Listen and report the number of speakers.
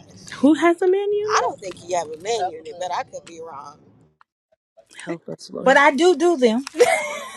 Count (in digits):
3